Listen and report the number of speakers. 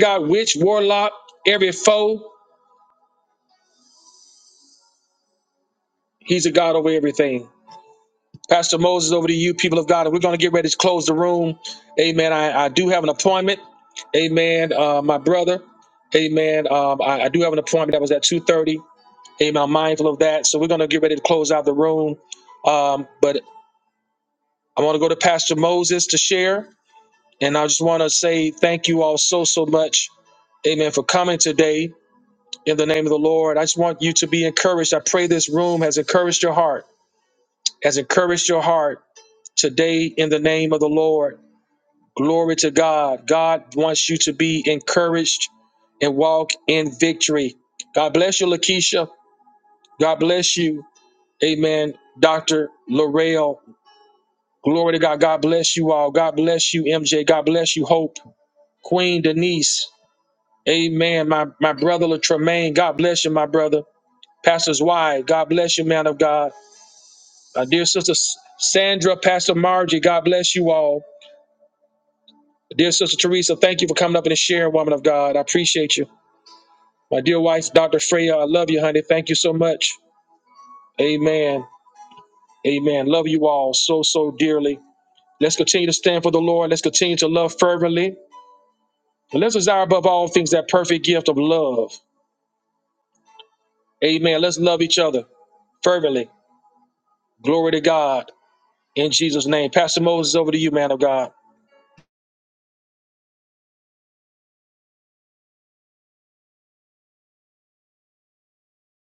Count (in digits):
1